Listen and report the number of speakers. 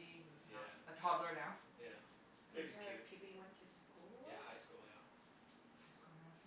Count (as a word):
three